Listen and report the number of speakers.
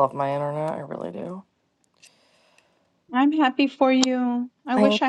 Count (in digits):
2